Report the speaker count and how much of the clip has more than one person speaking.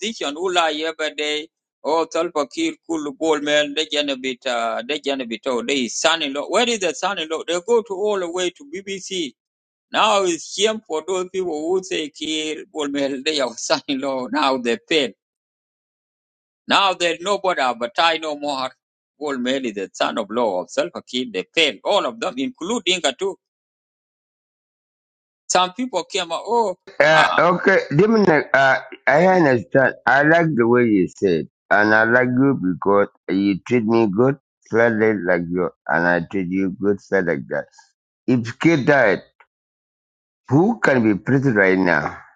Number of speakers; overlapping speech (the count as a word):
two, no overlap